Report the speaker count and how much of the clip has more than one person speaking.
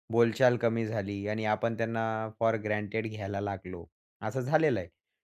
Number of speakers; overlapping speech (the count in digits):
1, no overlap